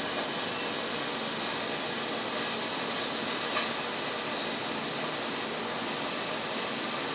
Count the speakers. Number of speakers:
zero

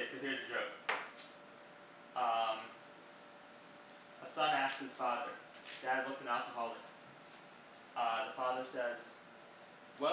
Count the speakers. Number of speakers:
one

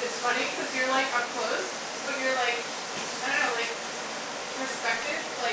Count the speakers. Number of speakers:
one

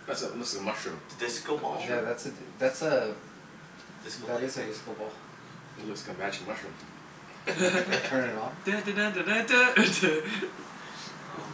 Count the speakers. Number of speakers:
four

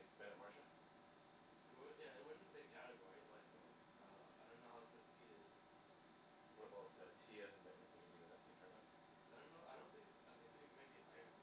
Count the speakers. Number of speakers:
two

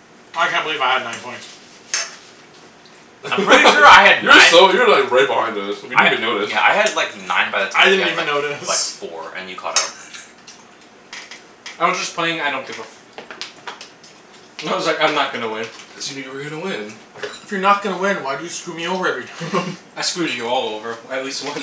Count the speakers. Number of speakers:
four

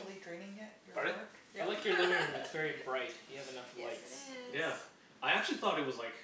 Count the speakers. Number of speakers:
four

